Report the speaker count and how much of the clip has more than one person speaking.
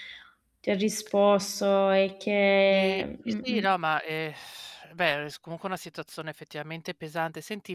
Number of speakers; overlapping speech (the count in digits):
2, about 12%